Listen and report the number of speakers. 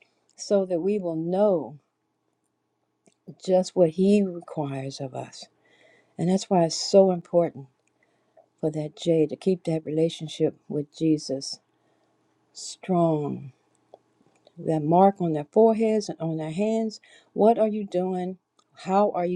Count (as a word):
one